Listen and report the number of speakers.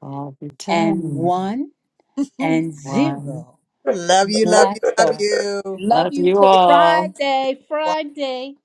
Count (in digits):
3